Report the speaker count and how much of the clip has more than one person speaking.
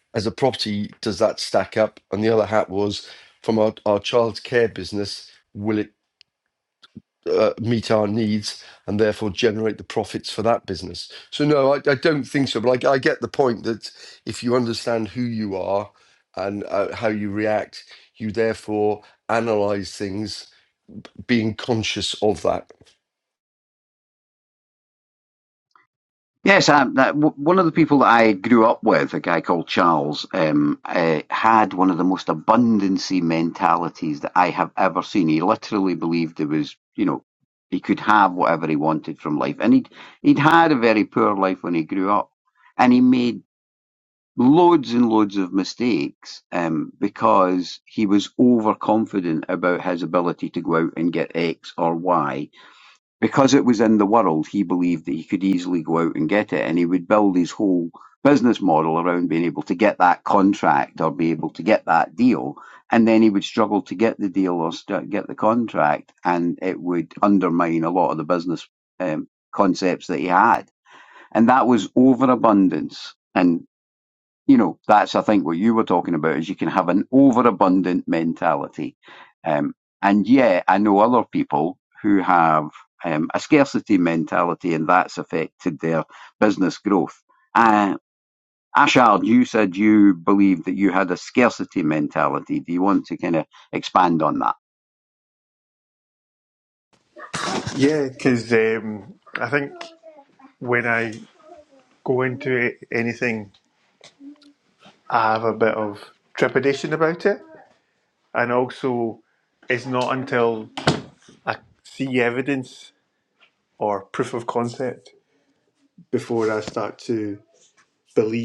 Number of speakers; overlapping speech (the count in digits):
3, no overlap